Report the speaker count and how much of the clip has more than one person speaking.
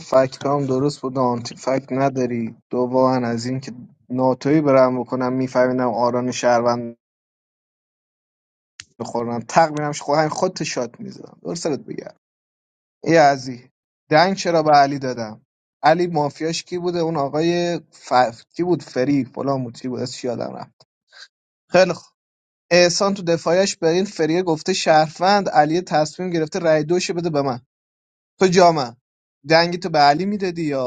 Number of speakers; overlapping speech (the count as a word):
one, no overlap